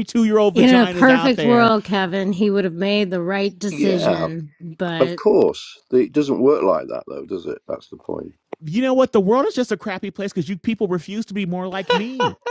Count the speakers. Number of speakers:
three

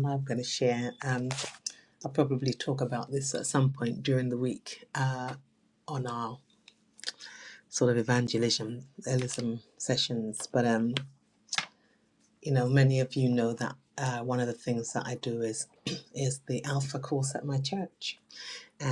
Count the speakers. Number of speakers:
one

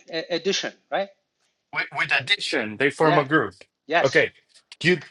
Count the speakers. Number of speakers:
two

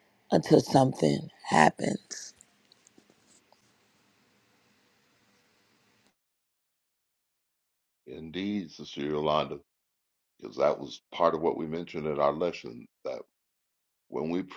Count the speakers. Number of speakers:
two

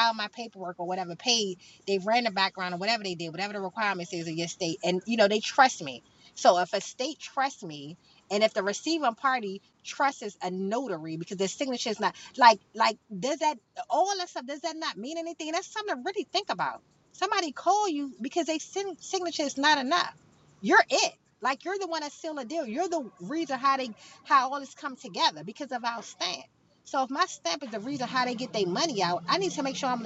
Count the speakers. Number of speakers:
one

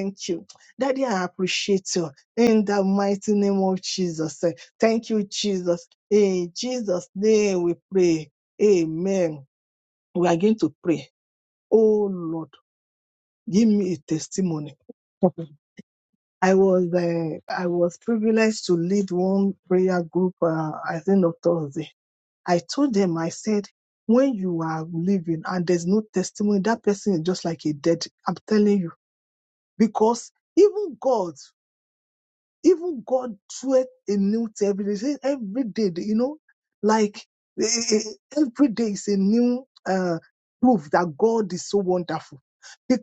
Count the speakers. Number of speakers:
one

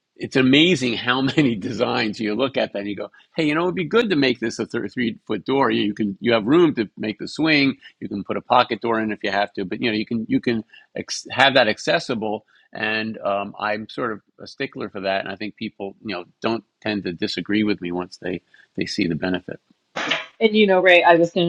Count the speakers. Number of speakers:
two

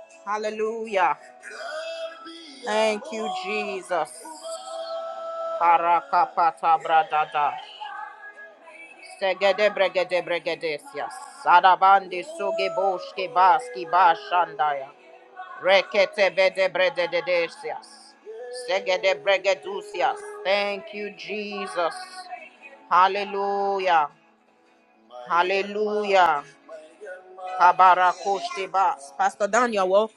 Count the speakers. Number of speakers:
one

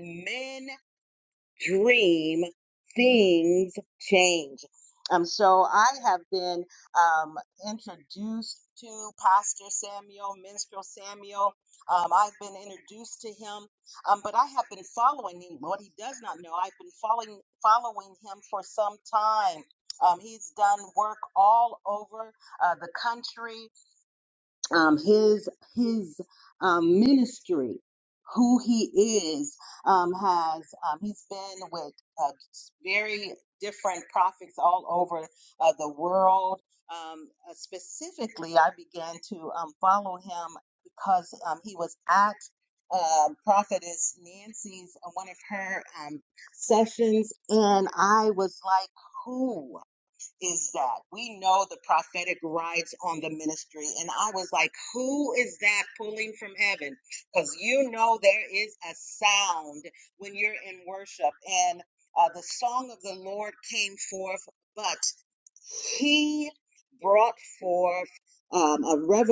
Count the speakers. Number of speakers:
one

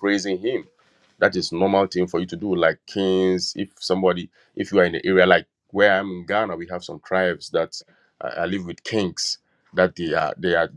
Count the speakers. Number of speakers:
one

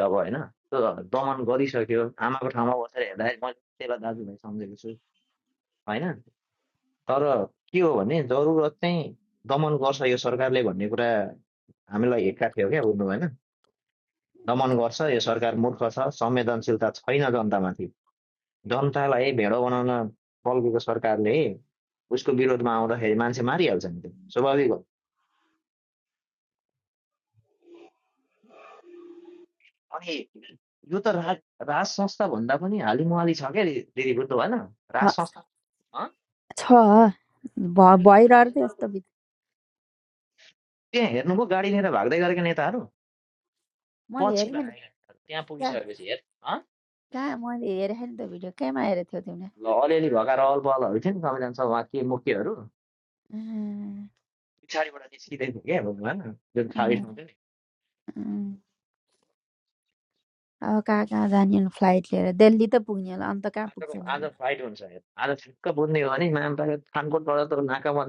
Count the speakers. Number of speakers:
two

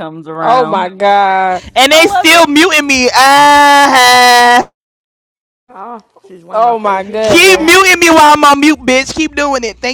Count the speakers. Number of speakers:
four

